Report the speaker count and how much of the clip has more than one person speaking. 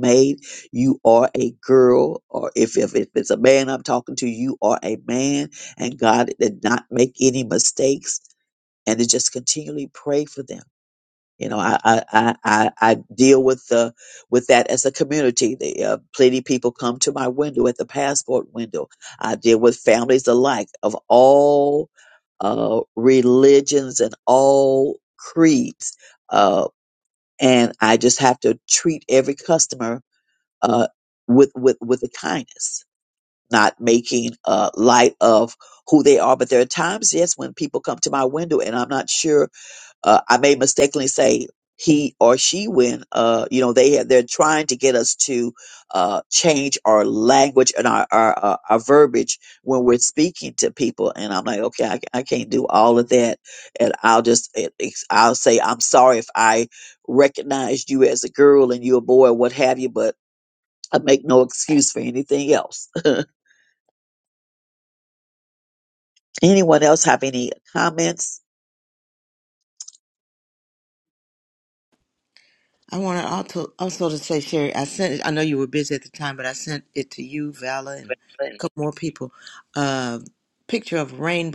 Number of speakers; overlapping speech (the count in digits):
2, no overlap